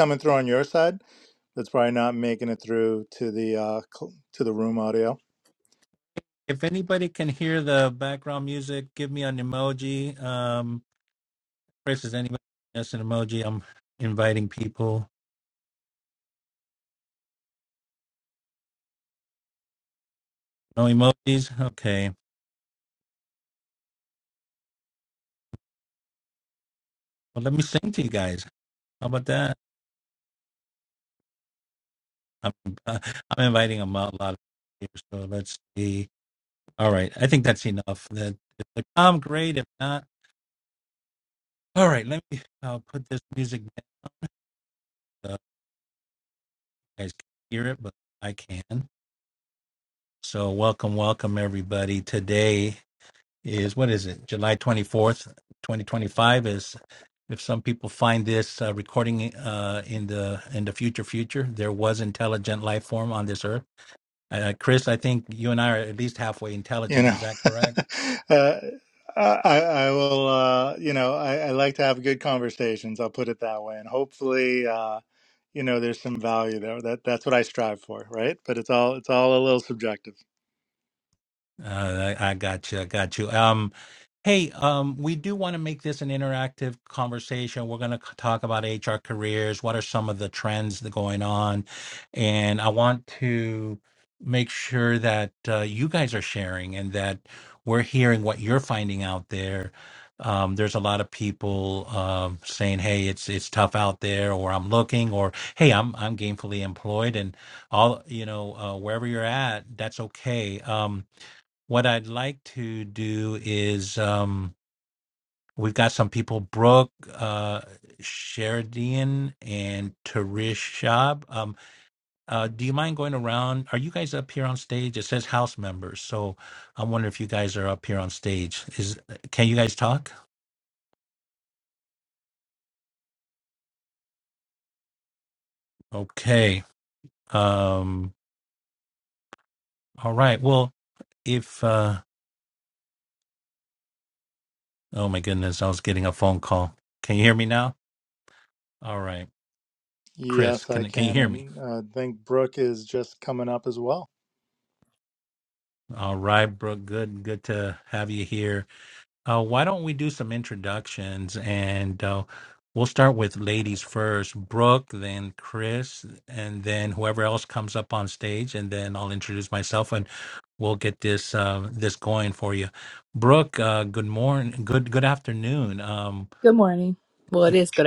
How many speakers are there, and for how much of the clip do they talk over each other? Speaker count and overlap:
3, about 1%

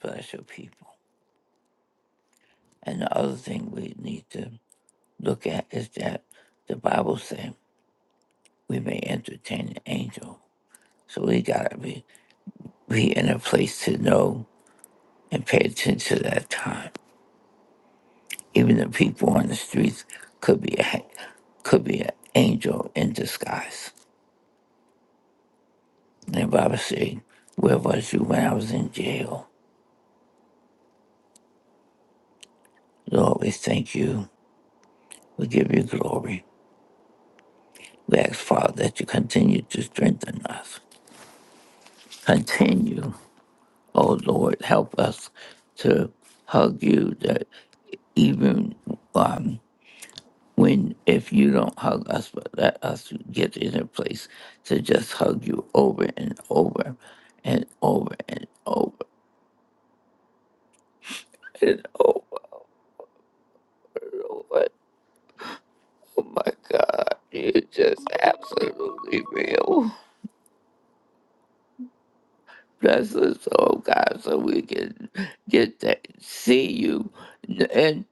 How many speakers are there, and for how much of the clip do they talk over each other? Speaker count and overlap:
1, no overlap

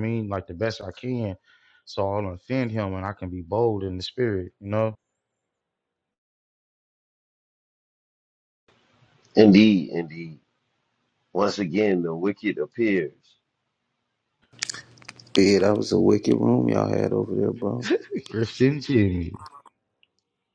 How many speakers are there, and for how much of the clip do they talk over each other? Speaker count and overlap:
3, no overlap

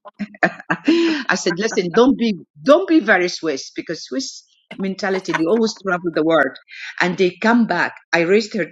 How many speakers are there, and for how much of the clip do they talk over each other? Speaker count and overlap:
1, no overlap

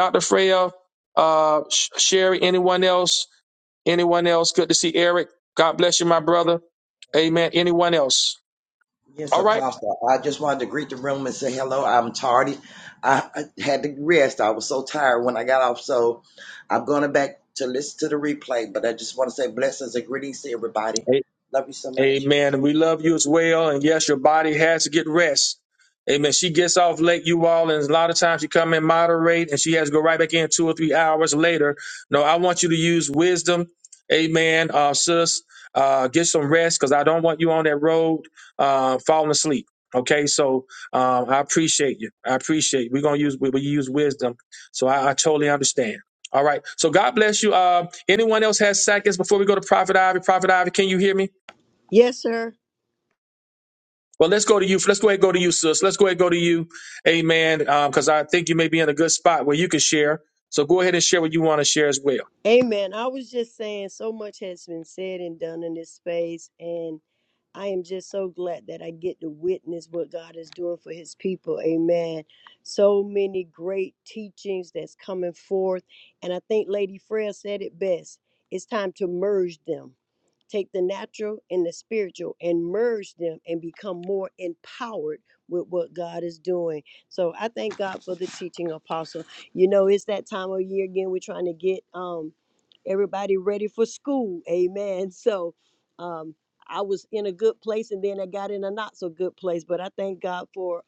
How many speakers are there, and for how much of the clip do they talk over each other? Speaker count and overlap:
3, about 1%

